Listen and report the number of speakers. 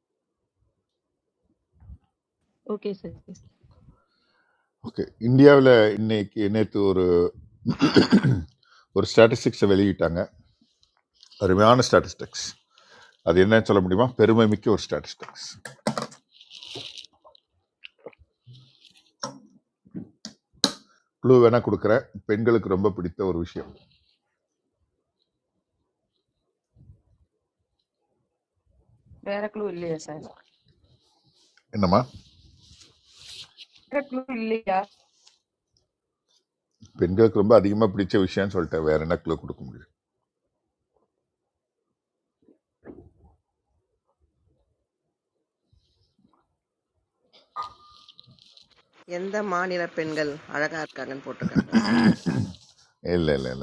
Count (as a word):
three